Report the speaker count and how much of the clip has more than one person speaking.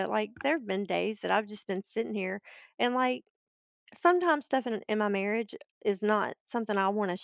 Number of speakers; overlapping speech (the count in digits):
1, no overlap